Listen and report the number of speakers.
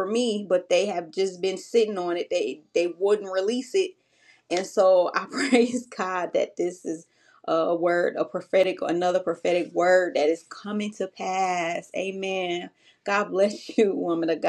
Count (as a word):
one